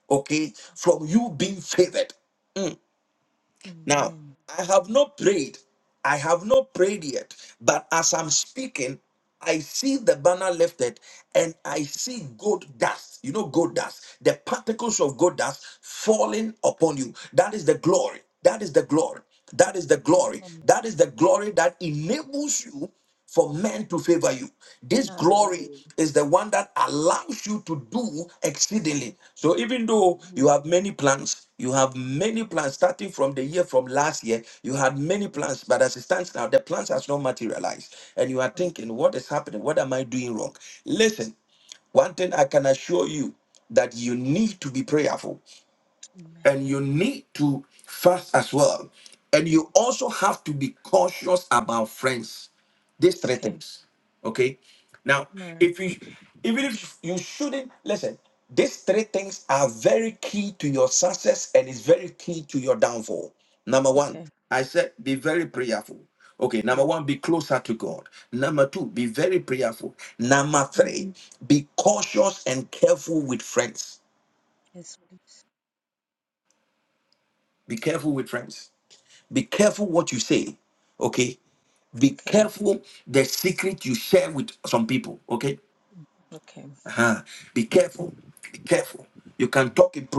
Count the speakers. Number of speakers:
two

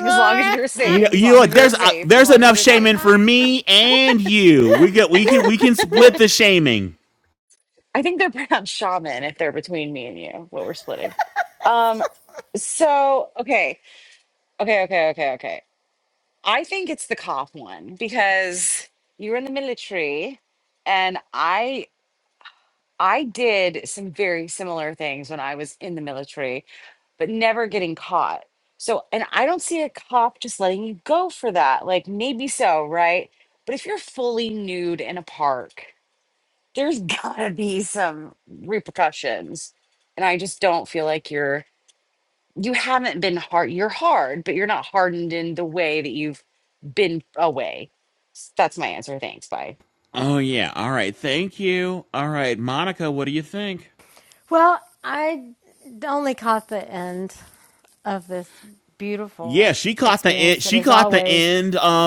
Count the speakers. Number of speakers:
three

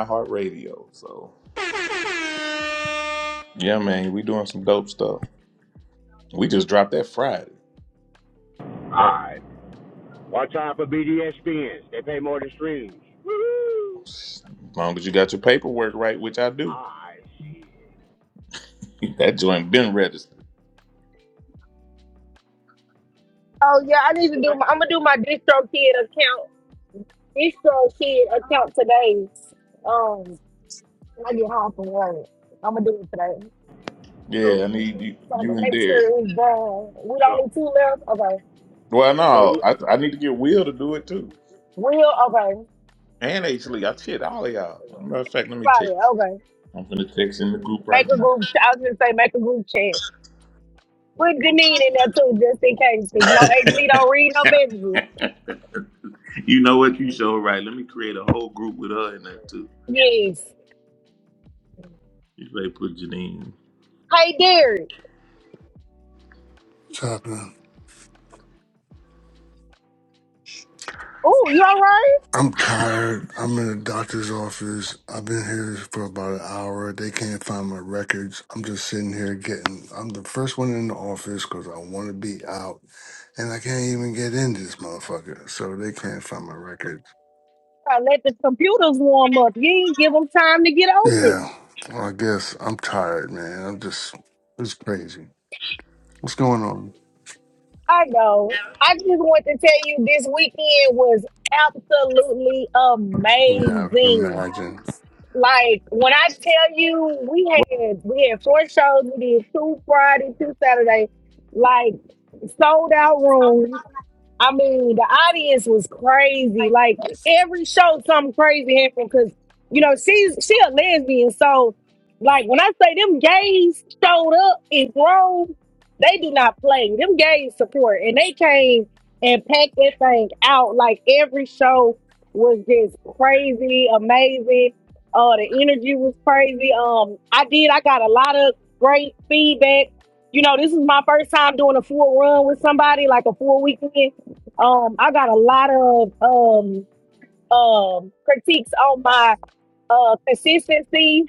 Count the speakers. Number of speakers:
four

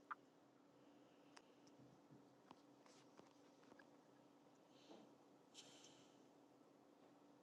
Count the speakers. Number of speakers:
zero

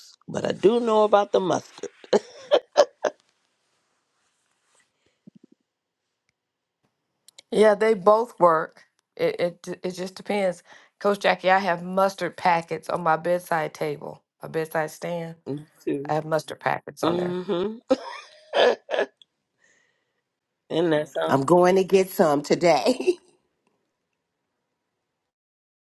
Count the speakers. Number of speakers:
three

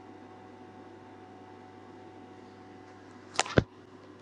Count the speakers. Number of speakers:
zero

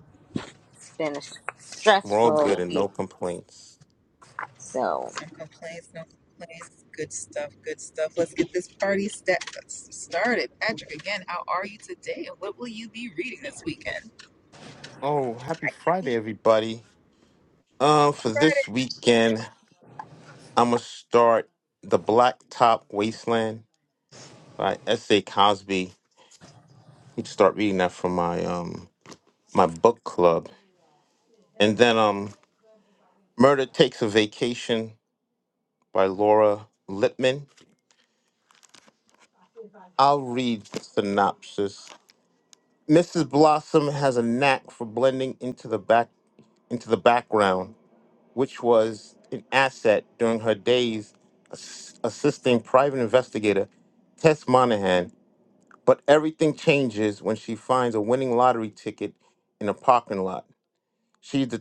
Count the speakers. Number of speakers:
three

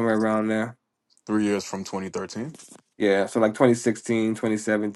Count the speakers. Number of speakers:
two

